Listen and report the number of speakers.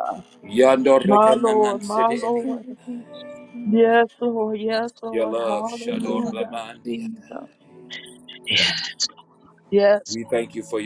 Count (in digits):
2